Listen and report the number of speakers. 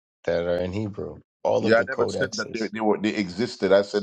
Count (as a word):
two